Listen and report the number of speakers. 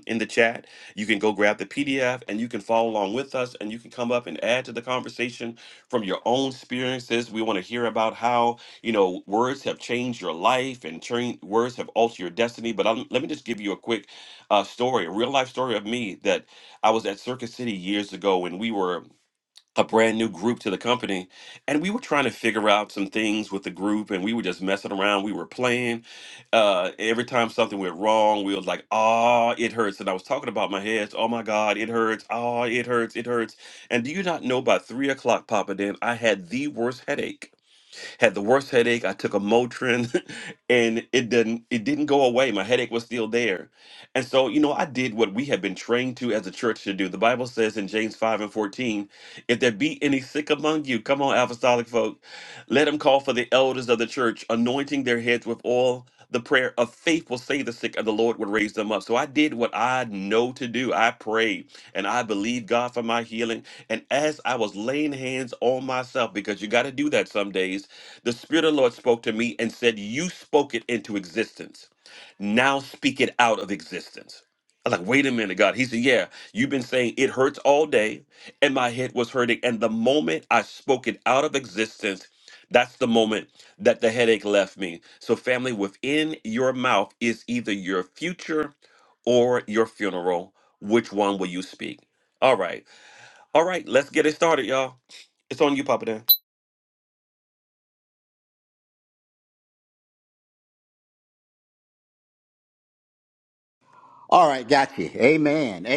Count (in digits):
2